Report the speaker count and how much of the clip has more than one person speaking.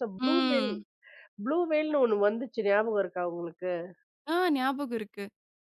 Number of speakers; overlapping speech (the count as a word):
two, about 8%